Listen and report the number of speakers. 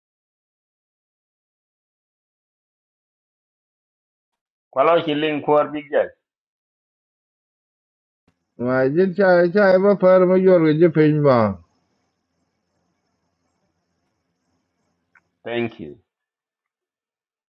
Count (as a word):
two